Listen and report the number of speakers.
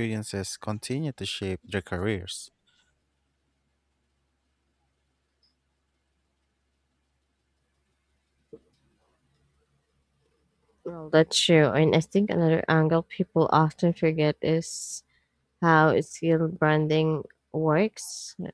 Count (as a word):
two